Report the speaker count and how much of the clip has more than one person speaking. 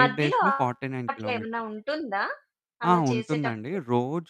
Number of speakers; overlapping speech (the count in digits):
2, about 46%